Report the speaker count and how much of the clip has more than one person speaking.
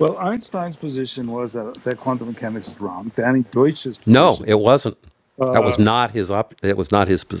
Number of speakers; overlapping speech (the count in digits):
2, about 10%